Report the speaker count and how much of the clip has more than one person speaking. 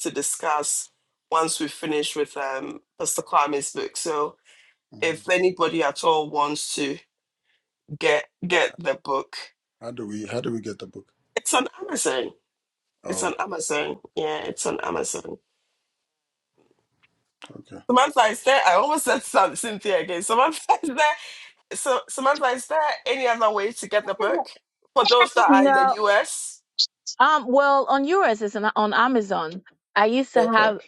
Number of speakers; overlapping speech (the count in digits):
3, about 4%